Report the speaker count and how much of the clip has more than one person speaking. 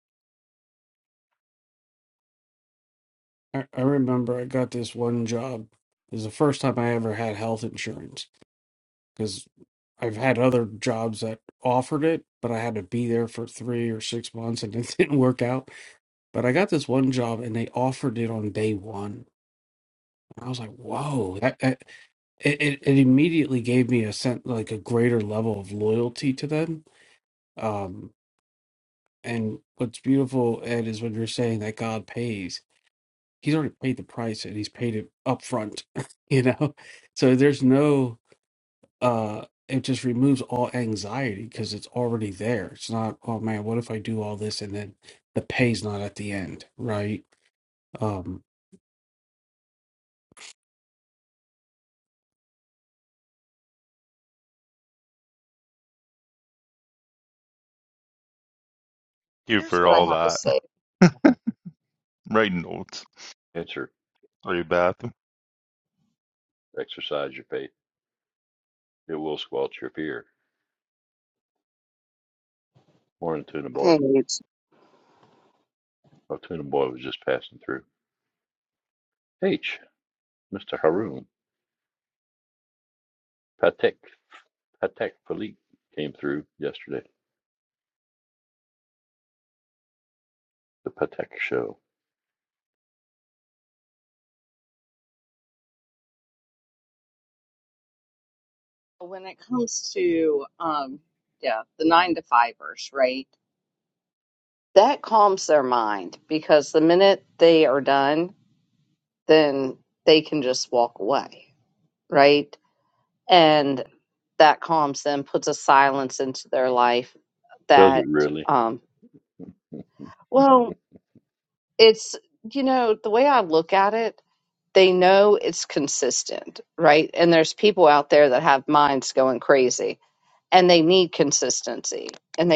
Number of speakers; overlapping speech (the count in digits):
4, about 1%